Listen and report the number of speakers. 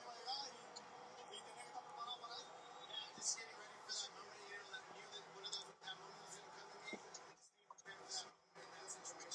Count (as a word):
zero